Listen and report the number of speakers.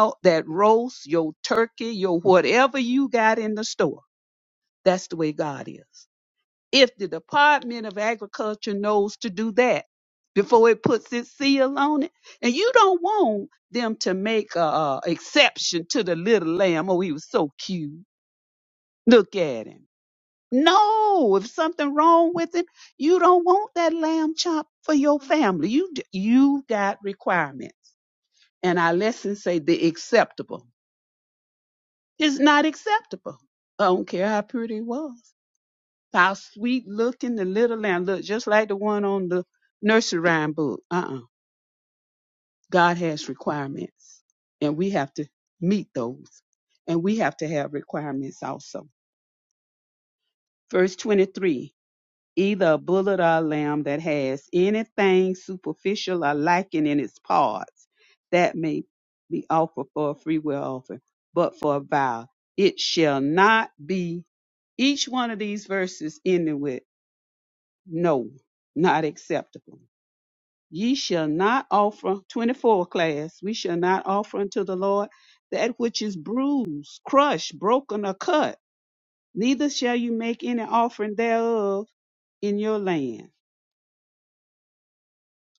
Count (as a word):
one